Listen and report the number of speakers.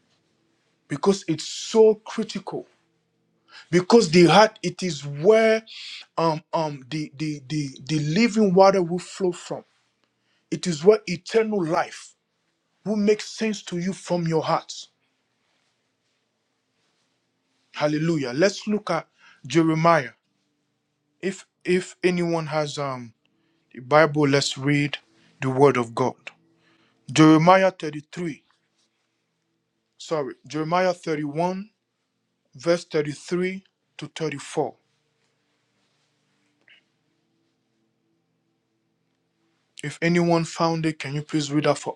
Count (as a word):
one